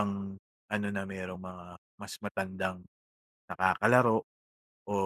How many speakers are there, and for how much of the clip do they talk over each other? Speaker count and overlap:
one, no overlap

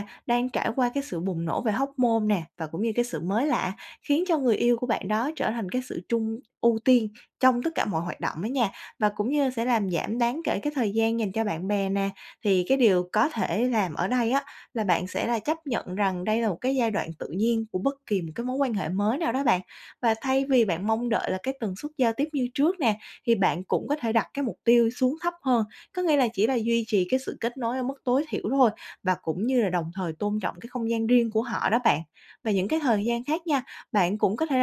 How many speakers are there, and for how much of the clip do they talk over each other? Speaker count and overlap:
one, no overlap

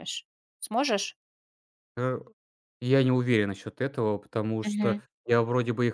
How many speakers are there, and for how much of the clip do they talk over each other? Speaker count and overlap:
two, about 6%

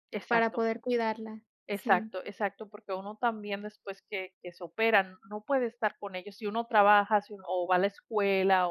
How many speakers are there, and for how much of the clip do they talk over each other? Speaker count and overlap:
two, about 6%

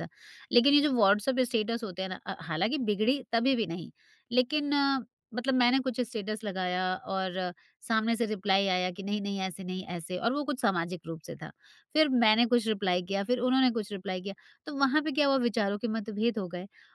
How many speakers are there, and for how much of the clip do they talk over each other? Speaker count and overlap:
one, no overlap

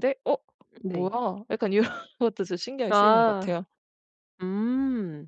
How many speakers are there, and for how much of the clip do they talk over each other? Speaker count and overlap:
two, about 15%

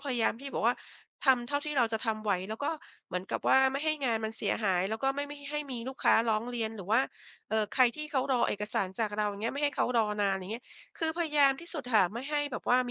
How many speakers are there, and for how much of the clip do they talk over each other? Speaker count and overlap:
one, no overlap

